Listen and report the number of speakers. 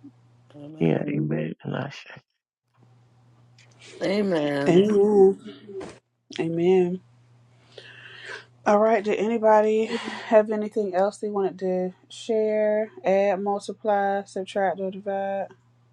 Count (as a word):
three